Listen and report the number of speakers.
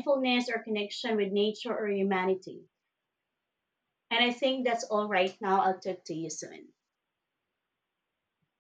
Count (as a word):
one